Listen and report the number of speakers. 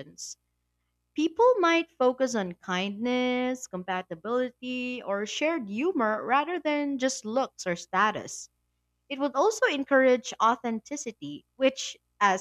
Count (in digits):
1